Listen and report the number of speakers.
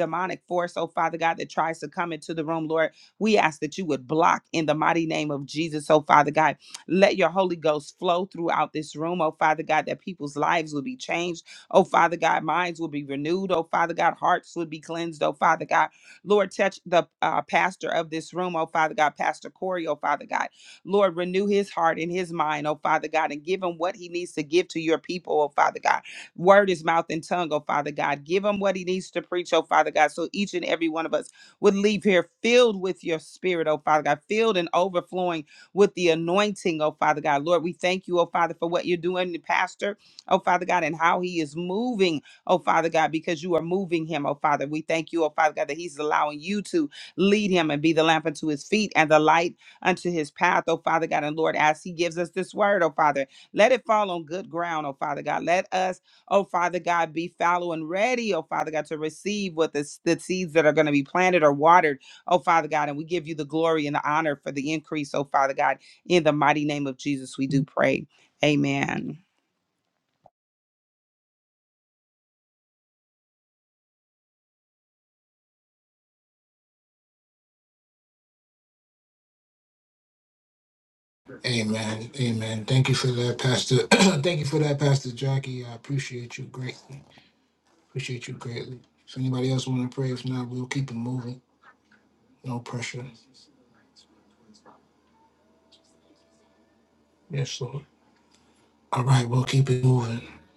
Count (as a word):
two